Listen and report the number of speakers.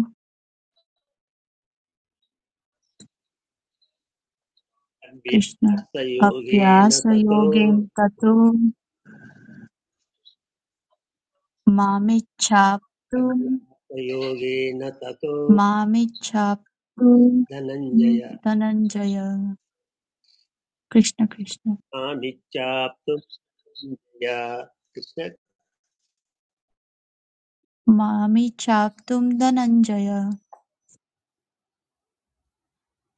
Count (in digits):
2